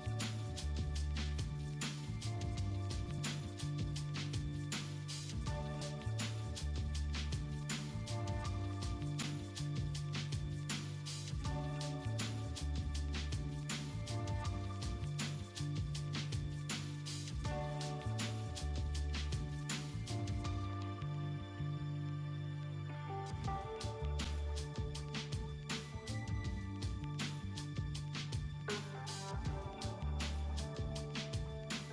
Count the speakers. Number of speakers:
zero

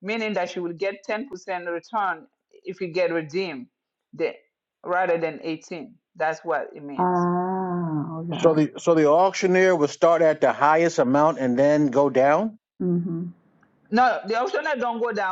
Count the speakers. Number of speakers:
three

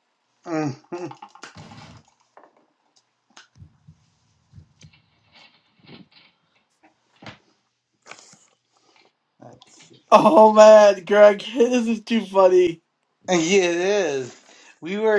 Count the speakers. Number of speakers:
two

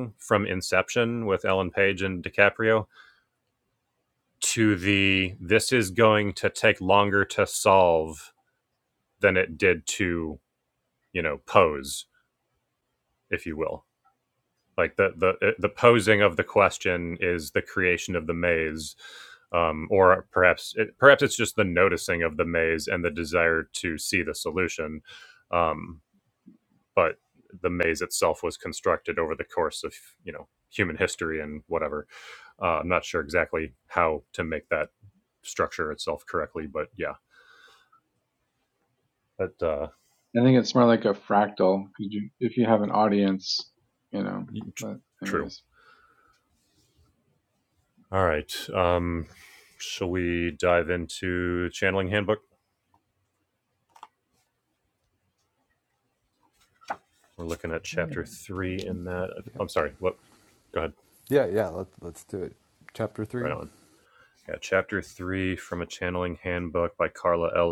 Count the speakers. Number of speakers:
three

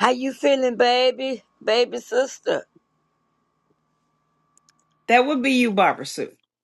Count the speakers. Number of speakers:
two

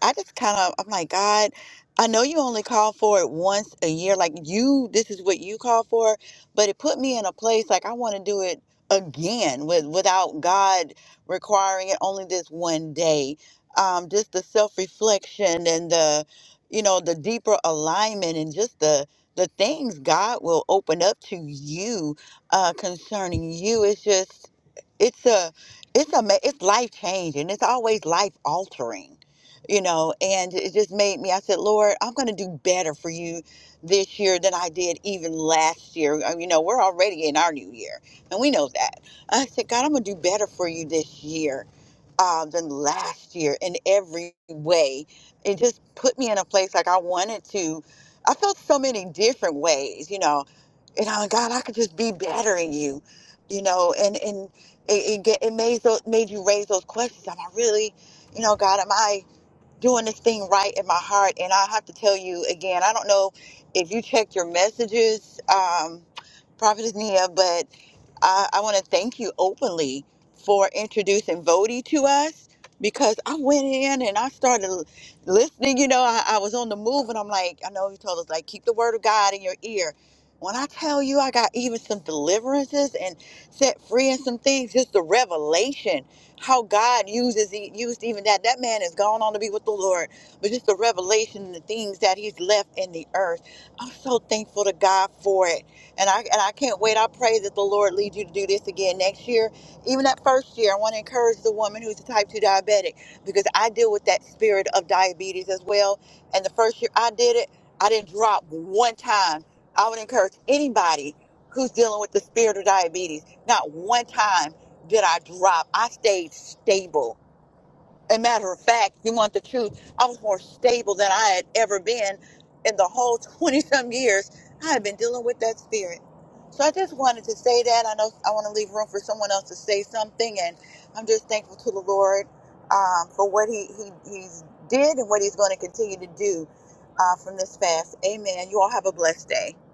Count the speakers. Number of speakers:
one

